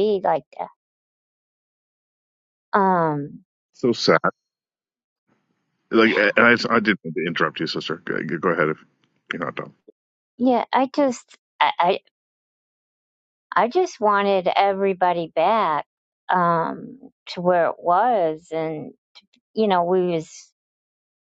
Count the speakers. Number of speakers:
two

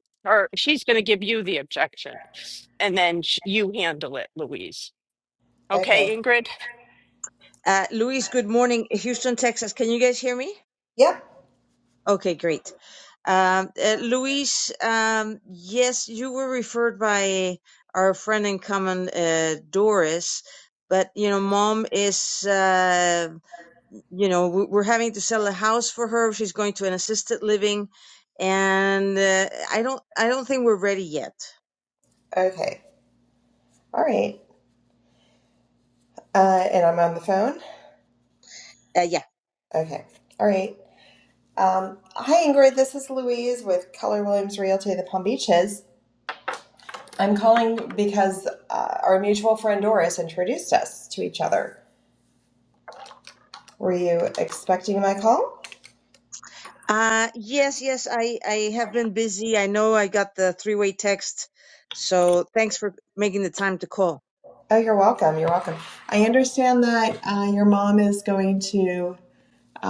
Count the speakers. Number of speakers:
three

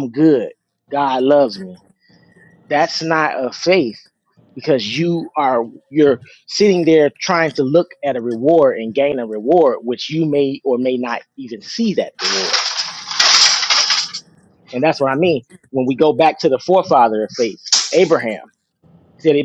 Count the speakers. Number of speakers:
one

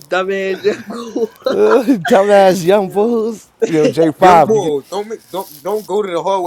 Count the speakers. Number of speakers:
three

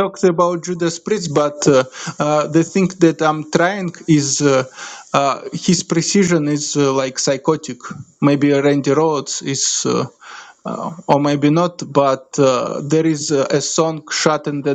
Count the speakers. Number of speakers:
one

